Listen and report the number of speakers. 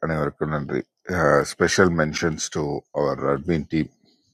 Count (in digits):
1